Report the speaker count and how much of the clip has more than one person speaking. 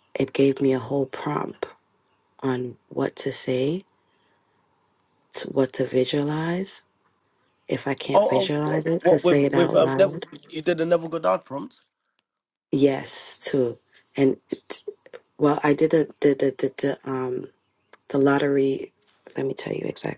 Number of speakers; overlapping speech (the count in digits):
2, about 10%